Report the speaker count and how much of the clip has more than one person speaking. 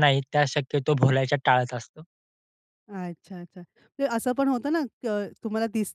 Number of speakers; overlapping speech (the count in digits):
2, no overlap